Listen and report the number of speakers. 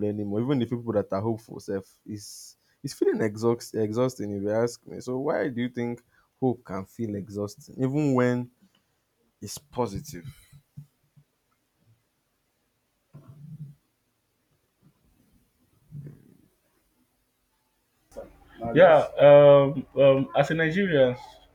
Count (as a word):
two